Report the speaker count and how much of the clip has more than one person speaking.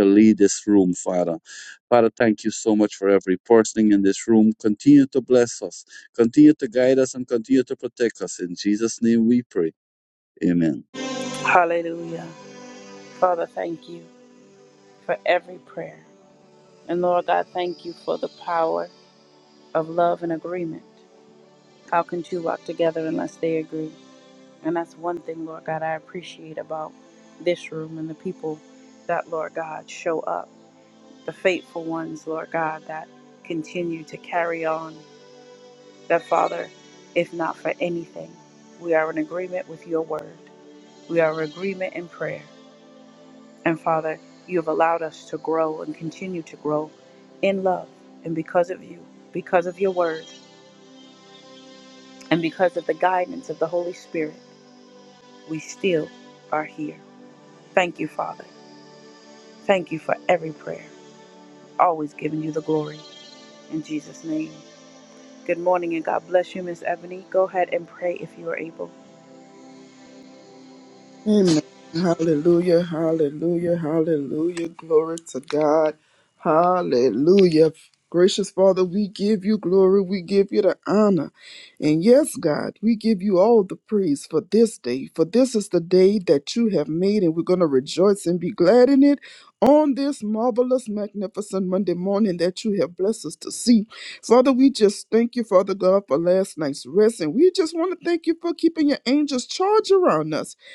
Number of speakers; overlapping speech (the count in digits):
3, no overlap